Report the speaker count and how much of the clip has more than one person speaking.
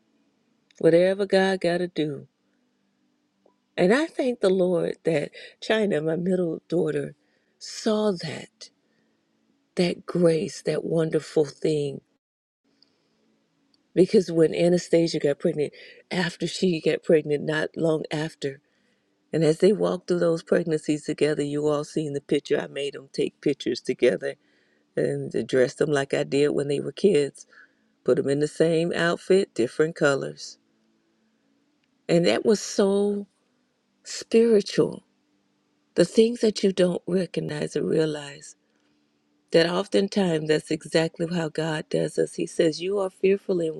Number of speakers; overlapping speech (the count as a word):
one, no overlap